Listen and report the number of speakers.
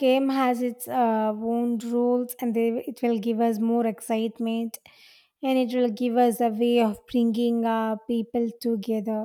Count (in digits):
1